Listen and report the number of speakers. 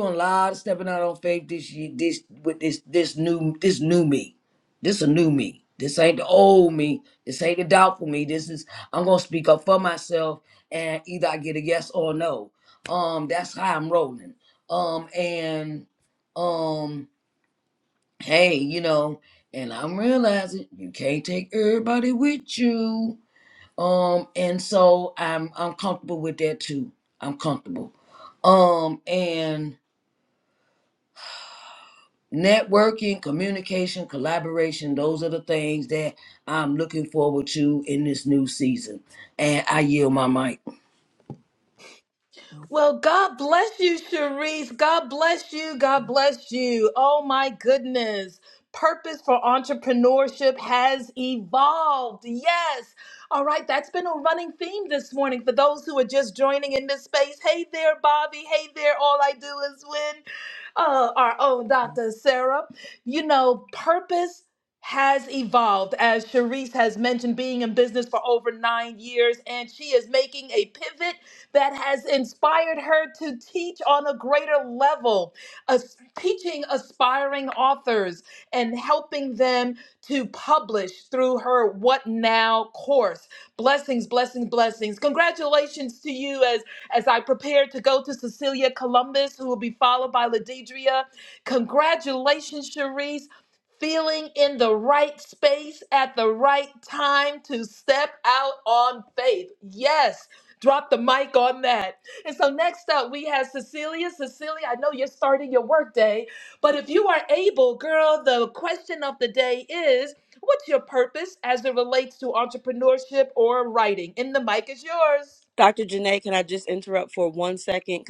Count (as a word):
three